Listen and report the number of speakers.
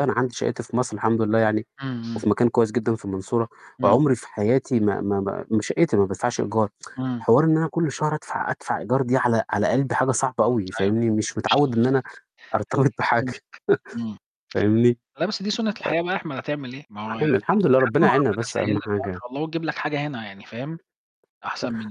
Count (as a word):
two